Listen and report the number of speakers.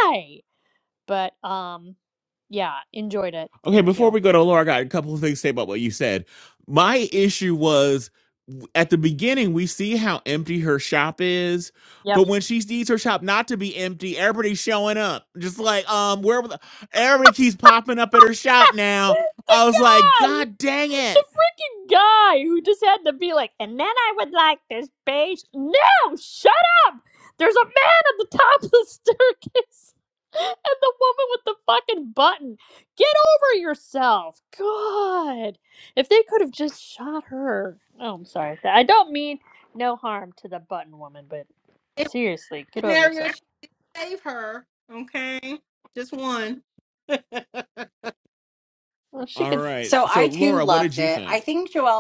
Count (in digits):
4